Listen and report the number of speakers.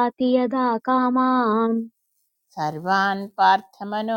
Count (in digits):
2